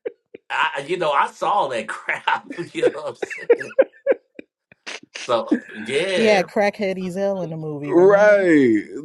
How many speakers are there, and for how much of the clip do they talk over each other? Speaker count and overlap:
3, about 10%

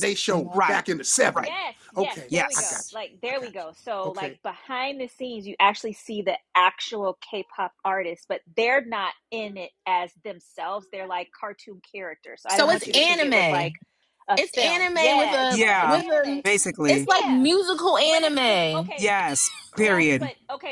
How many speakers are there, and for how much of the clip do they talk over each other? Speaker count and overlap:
4, about 35%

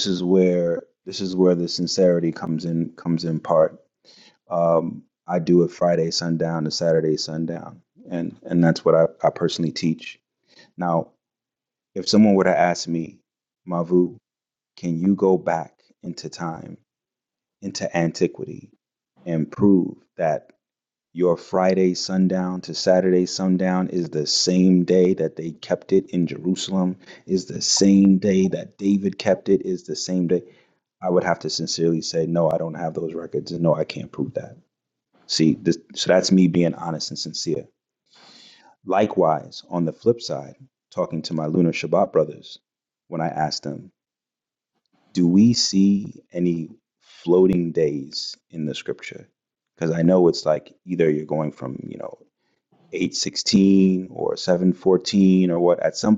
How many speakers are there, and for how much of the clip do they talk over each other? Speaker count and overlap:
1, no overlap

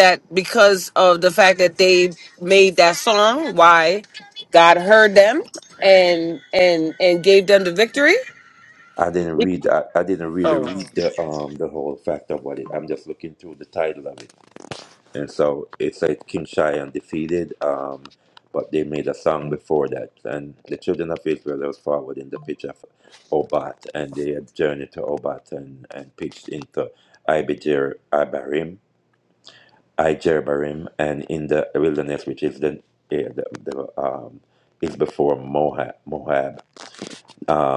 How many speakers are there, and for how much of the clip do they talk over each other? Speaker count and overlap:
2, about 1%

